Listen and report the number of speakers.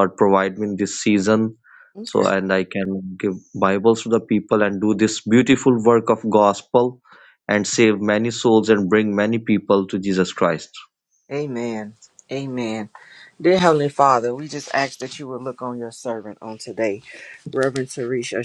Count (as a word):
two